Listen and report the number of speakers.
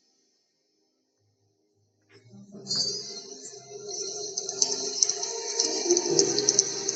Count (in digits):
0